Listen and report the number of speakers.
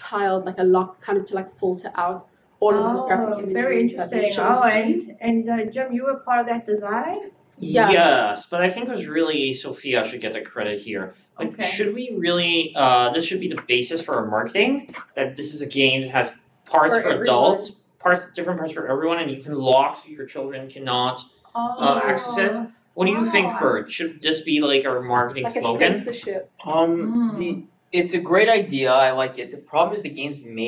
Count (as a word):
four